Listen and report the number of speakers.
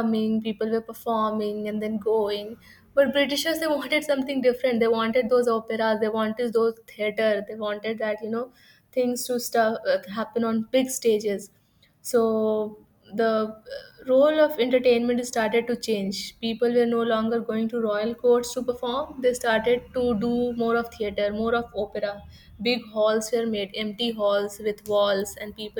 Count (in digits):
1